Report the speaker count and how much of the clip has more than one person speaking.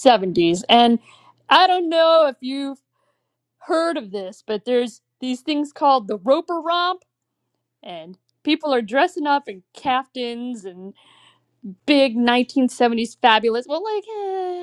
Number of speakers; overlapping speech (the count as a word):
one, no overlap